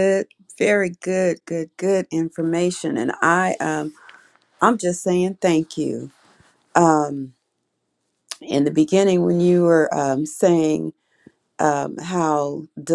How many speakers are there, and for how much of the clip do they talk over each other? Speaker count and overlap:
one, no overlap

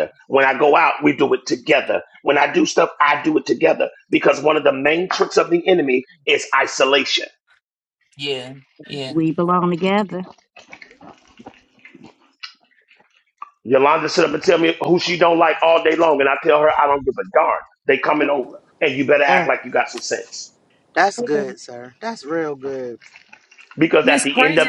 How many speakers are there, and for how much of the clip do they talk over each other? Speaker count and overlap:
four, about 4%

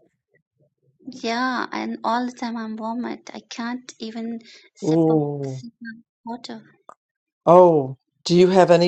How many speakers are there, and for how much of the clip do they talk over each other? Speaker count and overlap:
two, about 8%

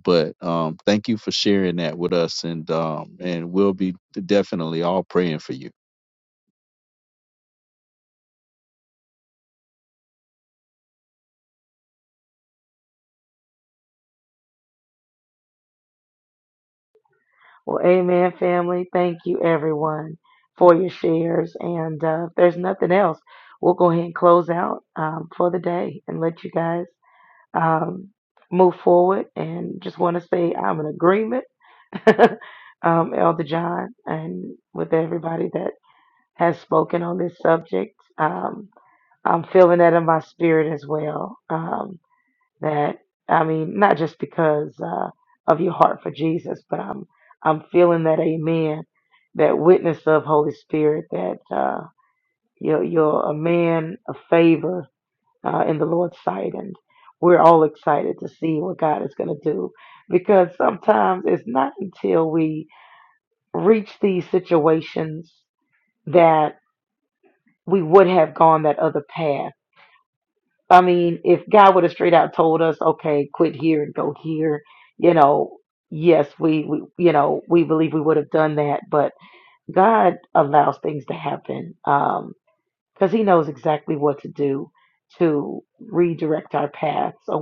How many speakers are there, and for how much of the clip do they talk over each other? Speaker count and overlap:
two, no overlap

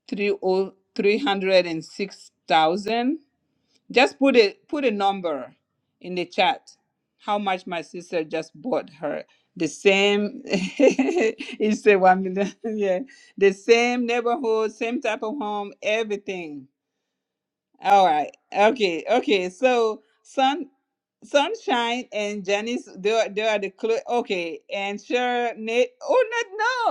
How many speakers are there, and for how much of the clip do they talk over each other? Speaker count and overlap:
one, no overlap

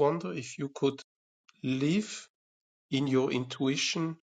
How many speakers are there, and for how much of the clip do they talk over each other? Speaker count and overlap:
one, no overlap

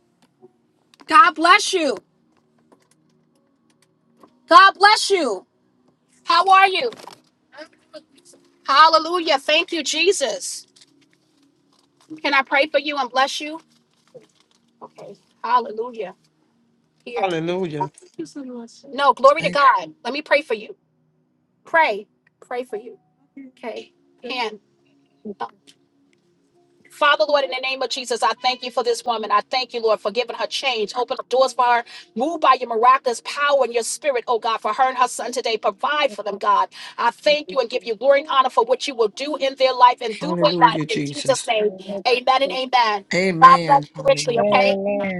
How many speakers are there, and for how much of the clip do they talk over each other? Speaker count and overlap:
three, about 9%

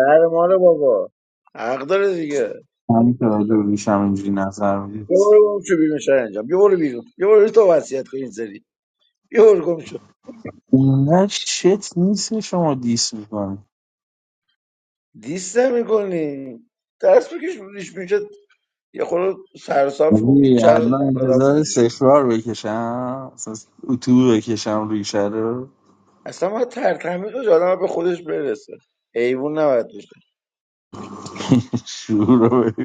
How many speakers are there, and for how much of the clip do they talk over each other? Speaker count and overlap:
two, about 5%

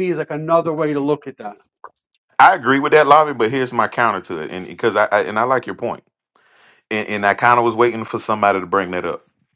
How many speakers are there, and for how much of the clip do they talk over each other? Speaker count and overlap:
two, no overlap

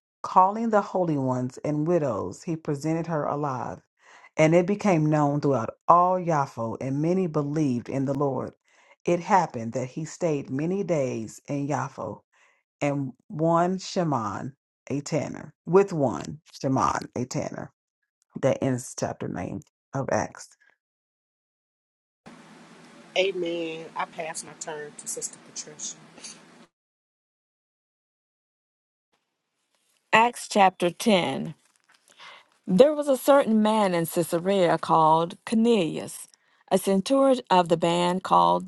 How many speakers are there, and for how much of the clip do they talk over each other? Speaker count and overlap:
three, no overlap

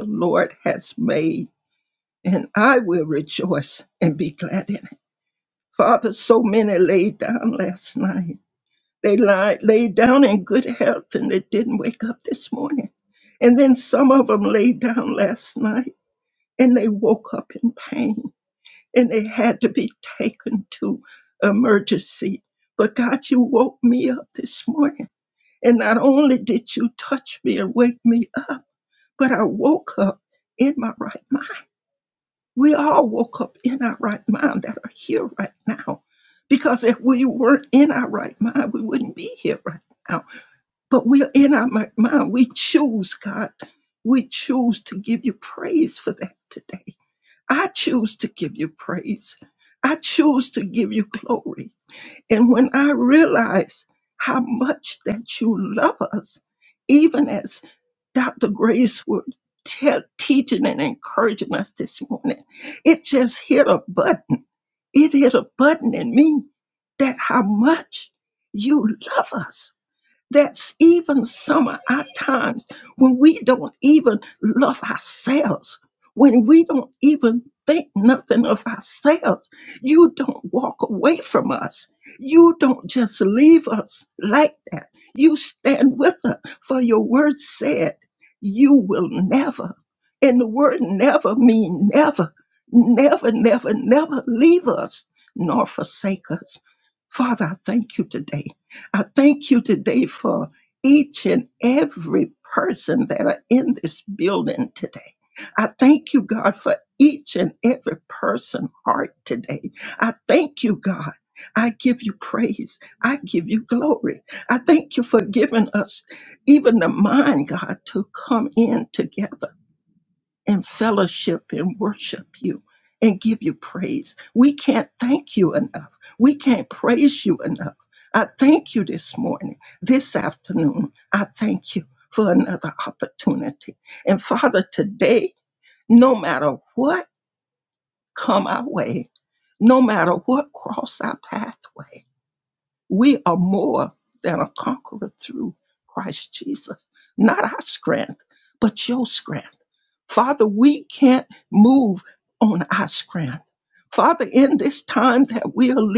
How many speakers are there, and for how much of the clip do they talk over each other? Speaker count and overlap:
one, no overlap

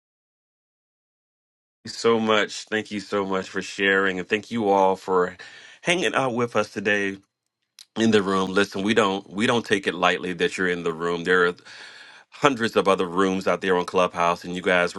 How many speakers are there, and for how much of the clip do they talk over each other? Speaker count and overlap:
one, no overlap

